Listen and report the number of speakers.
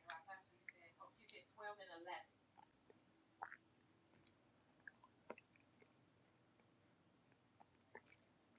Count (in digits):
0